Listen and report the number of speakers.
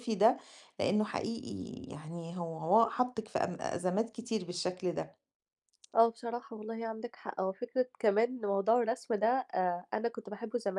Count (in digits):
2